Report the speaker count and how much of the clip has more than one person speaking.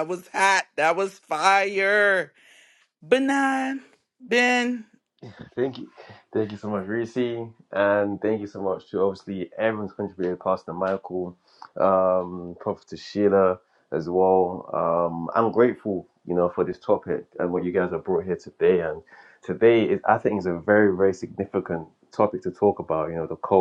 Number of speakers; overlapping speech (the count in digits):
2, no overlap